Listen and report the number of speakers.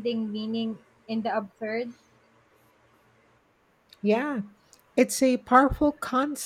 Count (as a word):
two